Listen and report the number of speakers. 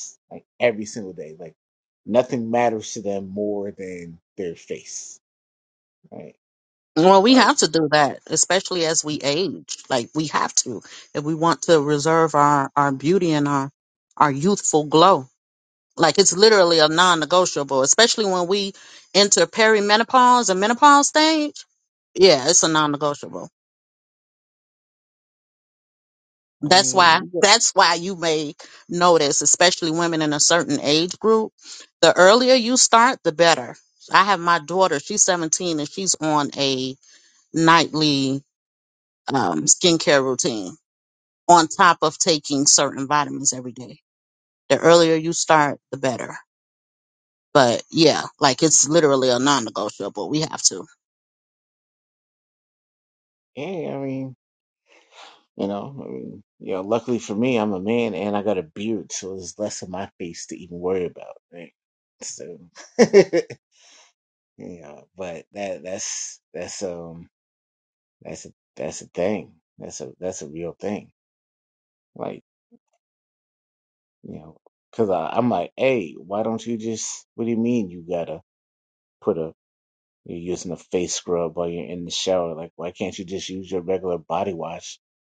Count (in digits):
2